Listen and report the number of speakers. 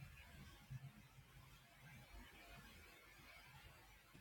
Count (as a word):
zero